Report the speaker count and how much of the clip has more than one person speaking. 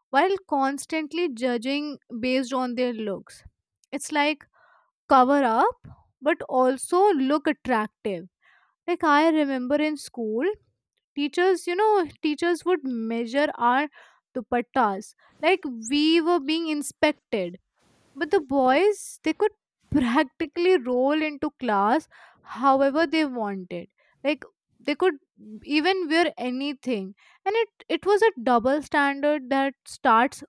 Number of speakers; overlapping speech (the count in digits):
1, no overlap